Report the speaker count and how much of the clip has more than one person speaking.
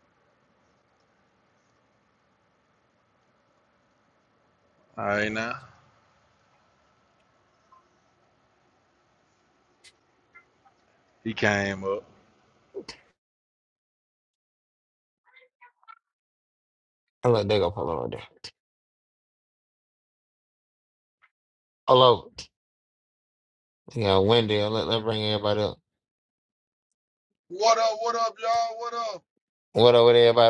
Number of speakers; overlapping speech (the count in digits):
3, no overlap